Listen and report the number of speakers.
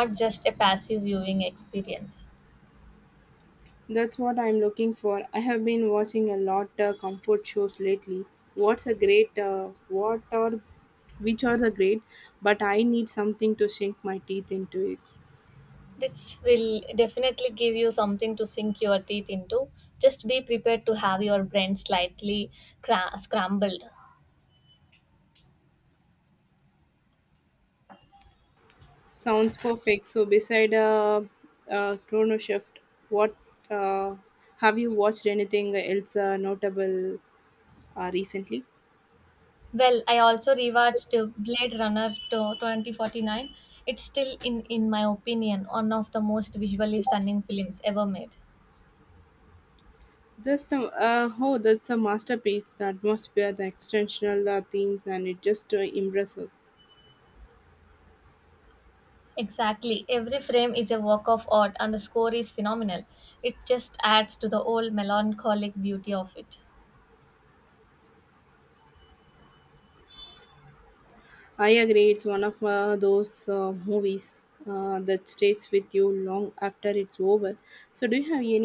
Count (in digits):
2